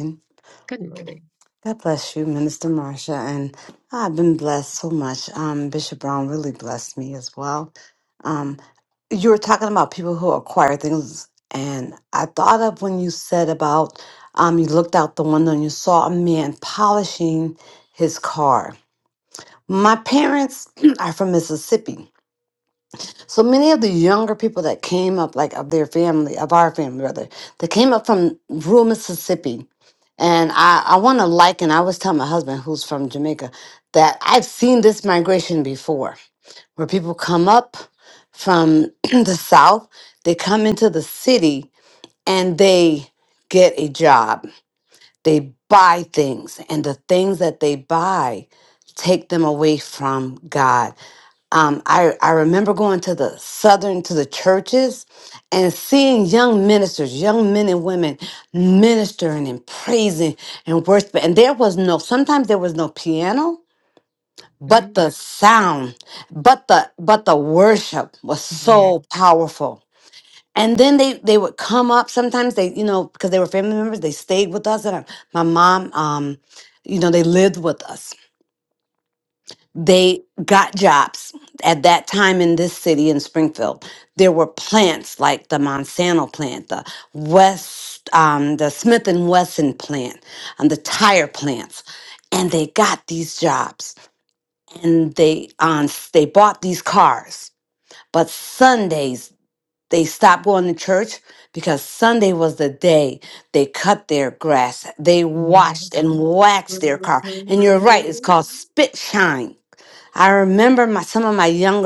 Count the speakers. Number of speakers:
two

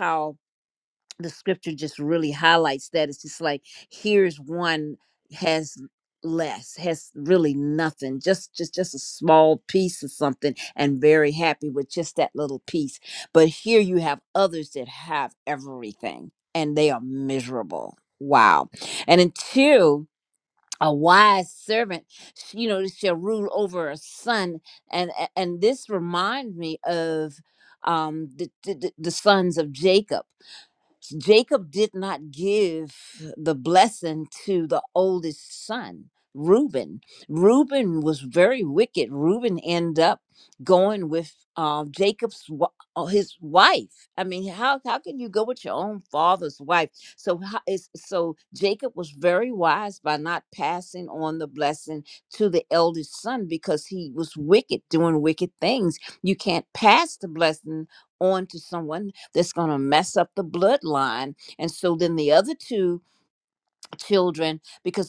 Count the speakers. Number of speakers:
one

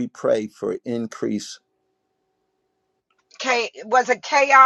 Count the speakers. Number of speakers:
two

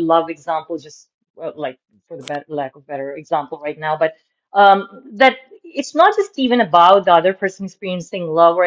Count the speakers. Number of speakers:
one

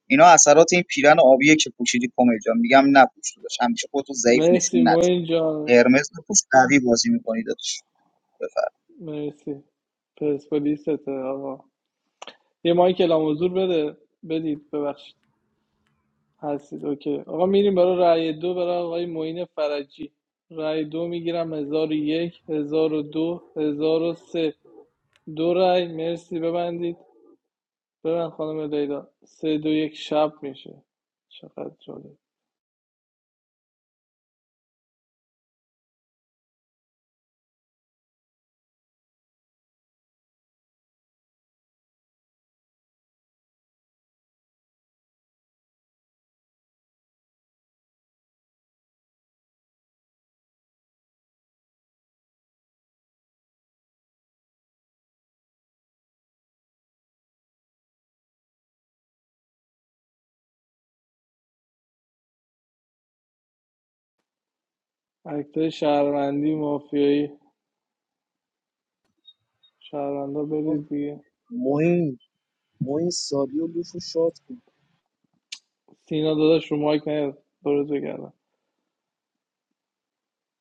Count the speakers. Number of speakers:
three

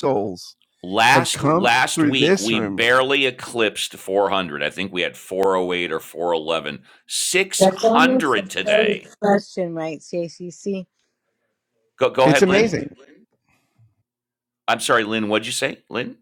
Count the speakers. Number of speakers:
three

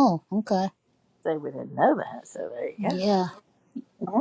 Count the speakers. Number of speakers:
two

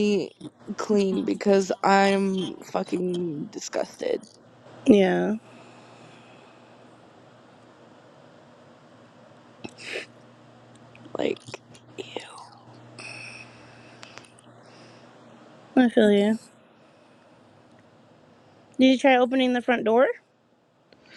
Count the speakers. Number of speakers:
two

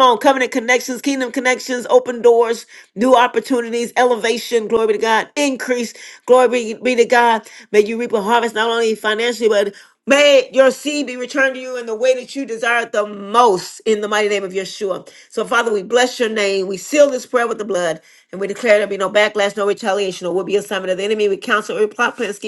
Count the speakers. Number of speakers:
one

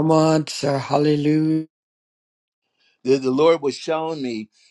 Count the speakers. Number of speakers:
two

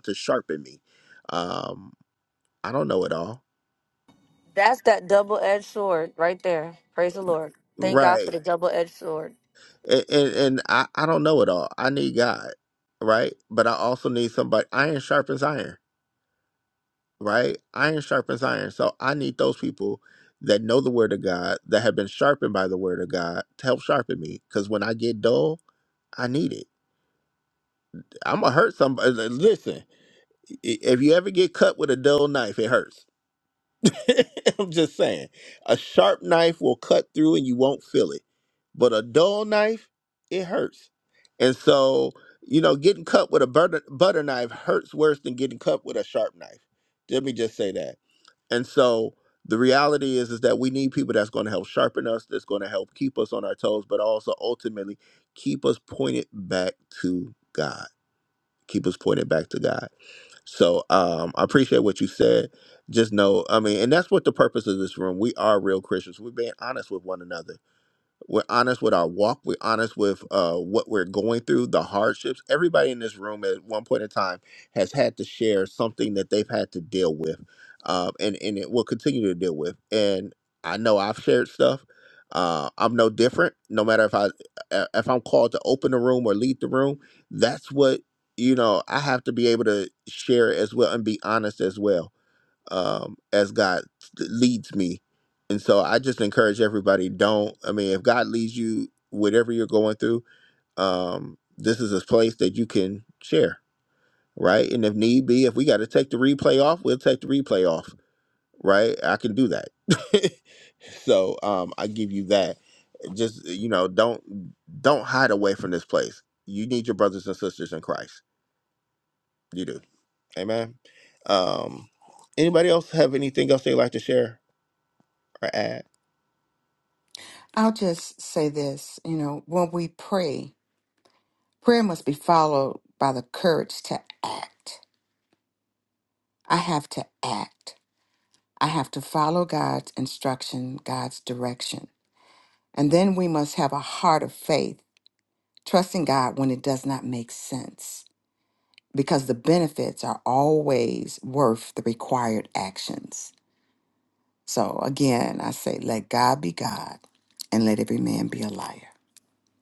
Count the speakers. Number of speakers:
three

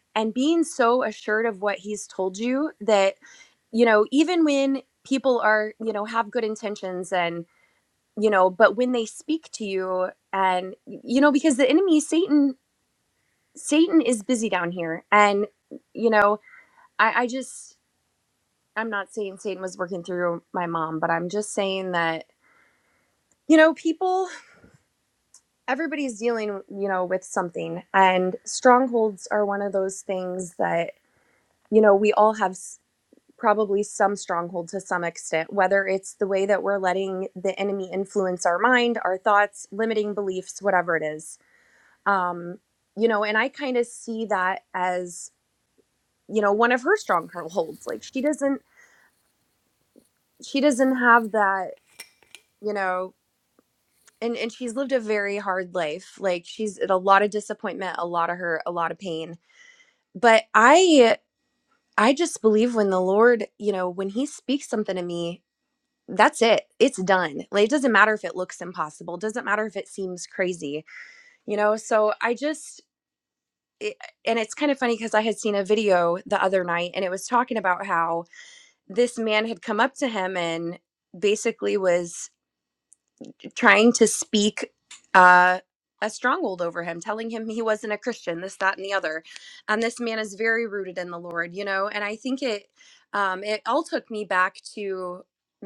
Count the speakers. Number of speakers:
one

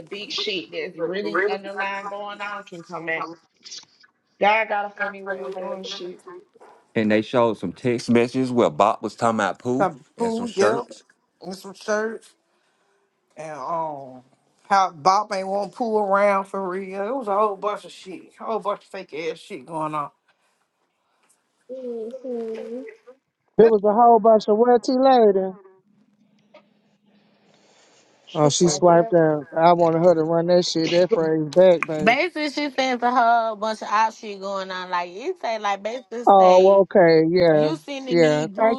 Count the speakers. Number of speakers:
five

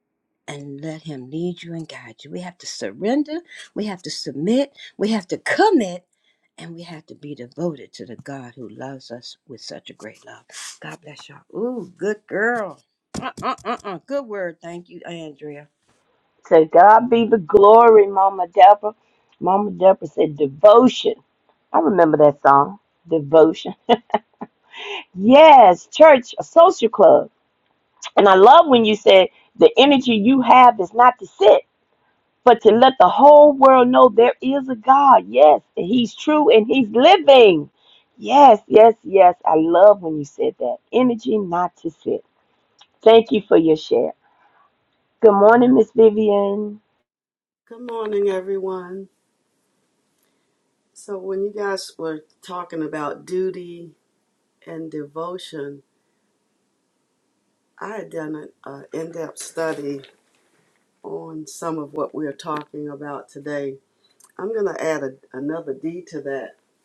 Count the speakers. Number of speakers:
three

